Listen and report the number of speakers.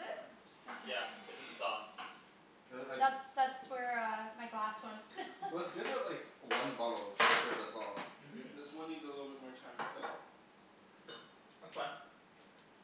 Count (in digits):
4